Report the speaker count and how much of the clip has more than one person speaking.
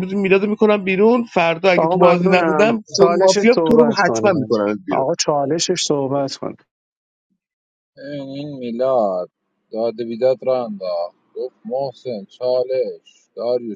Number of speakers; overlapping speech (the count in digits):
3, about 21%